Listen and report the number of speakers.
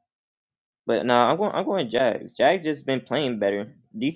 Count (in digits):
1